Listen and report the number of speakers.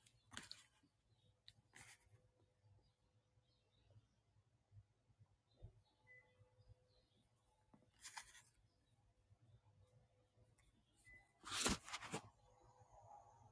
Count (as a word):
zero